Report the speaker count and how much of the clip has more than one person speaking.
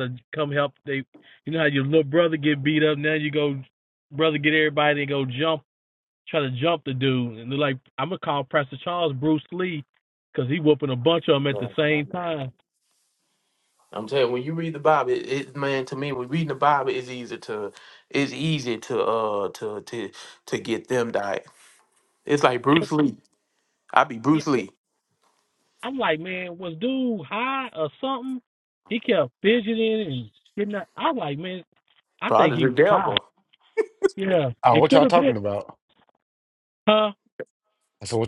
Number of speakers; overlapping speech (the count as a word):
three, about 6%